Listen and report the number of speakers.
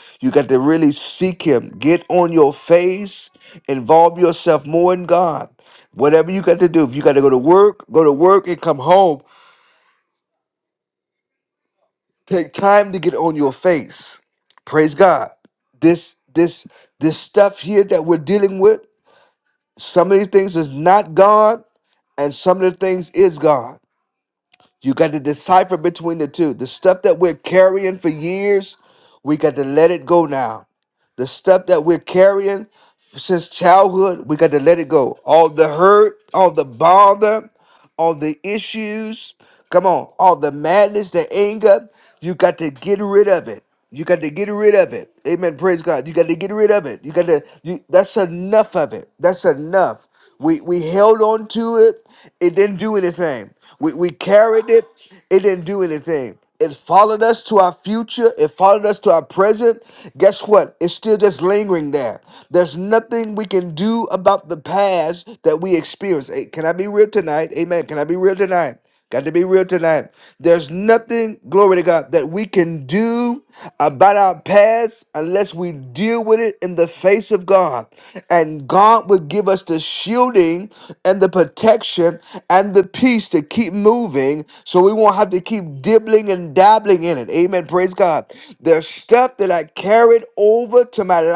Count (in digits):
1